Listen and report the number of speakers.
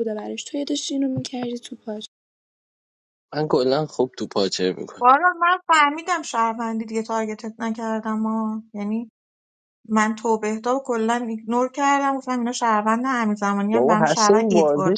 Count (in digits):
3